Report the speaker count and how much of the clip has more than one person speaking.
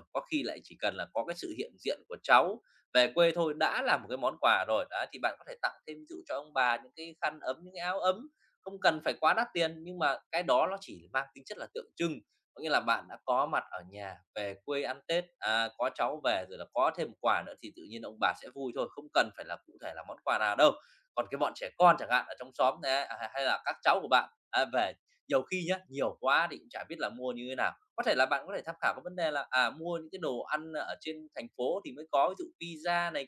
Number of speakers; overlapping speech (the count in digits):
1, no overlap